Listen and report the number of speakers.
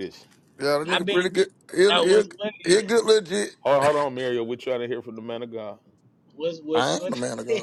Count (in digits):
3